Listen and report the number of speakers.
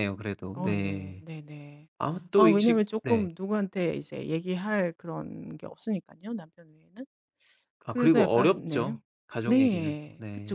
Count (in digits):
2